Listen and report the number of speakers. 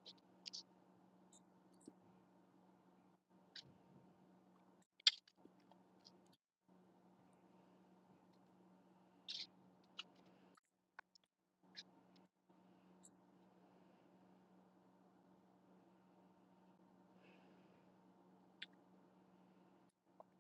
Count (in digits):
0